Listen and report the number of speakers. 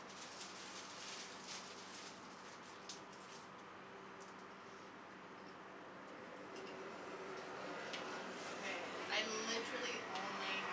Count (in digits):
1